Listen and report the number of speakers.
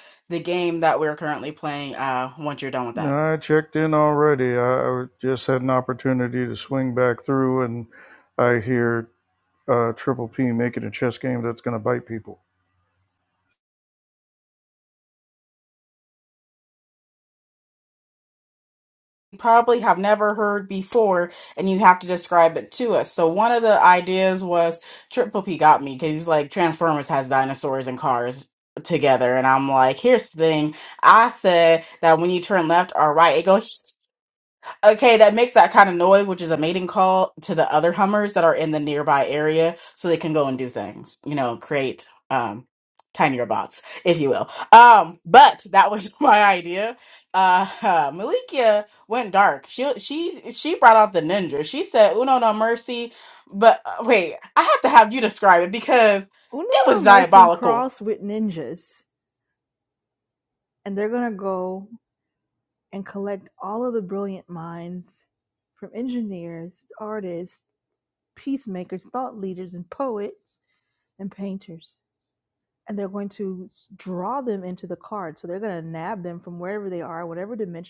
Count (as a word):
three